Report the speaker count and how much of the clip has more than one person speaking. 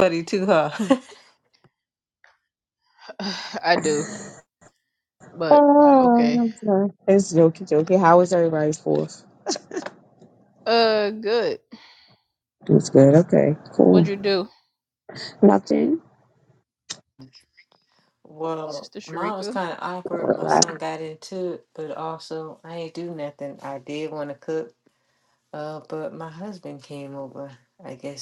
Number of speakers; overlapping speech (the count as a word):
three, about 7%